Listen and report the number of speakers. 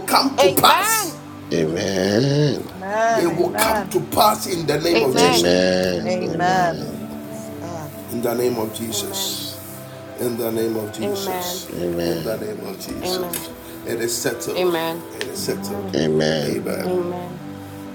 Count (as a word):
four